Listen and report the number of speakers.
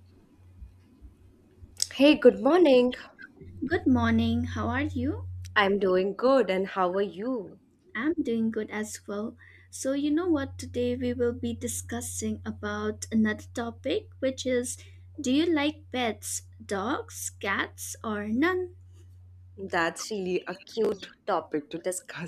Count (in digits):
2